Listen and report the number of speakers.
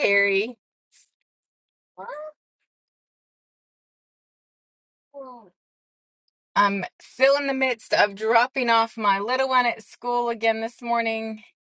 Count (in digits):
1